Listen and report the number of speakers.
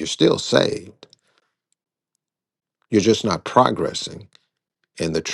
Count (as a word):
one